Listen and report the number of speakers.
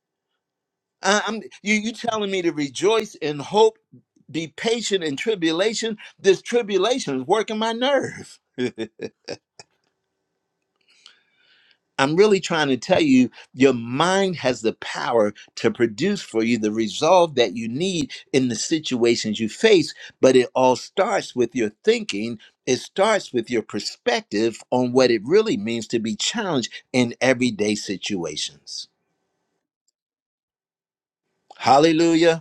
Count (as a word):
one